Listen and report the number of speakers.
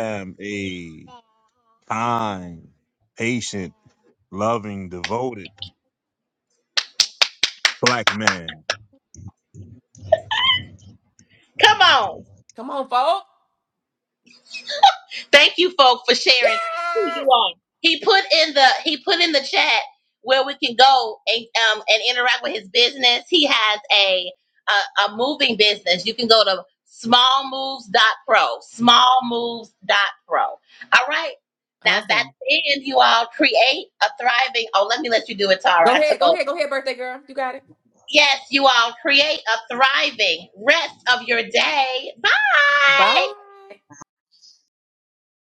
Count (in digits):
3